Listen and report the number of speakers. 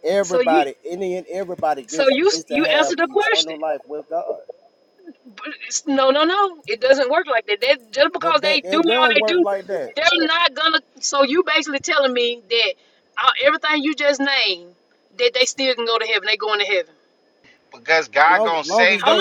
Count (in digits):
3